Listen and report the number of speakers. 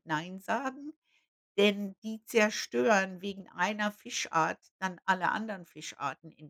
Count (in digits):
1